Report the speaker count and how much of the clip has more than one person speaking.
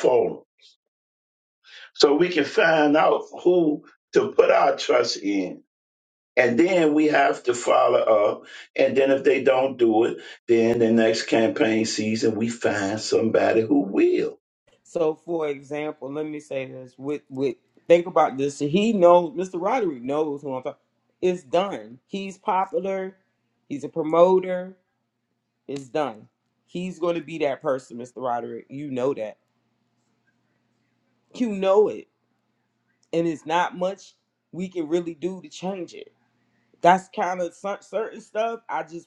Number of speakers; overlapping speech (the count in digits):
2, no overlap